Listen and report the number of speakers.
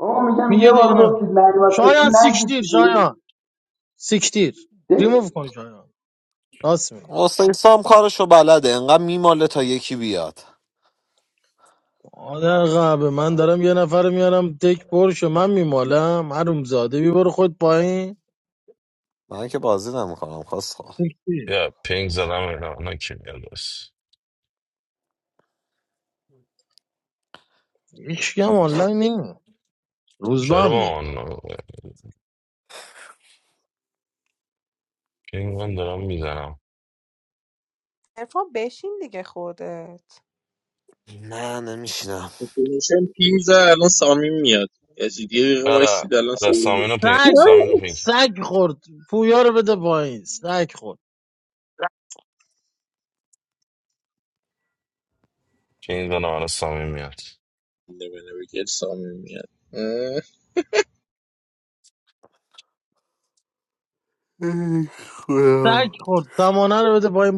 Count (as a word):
six